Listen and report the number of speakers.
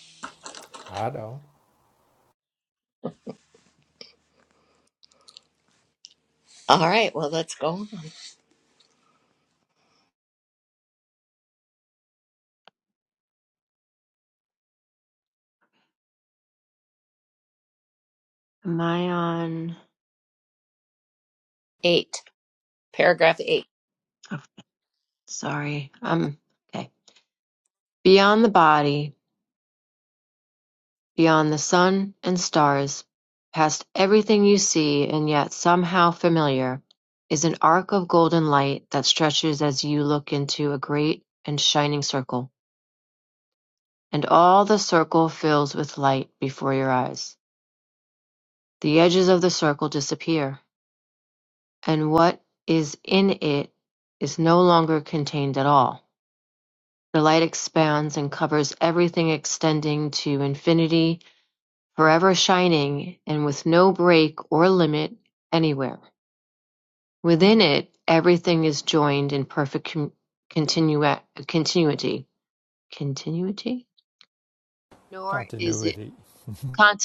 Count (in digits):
3